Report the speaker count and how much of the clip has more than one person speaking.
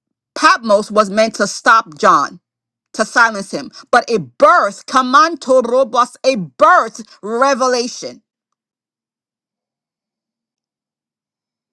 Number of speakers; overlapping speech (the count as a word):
one, no overlap